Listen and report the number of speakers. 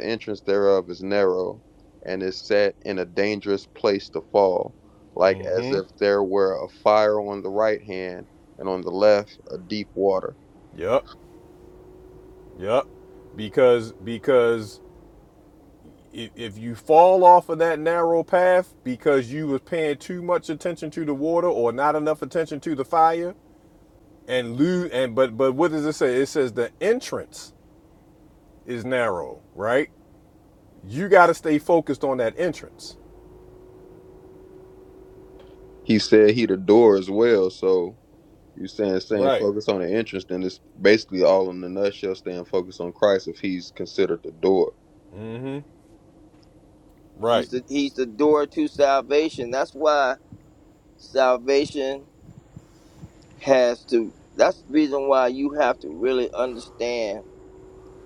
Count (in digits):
3